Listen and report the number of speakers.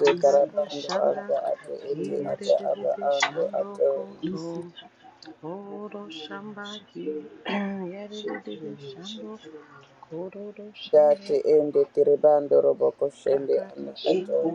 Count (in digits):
3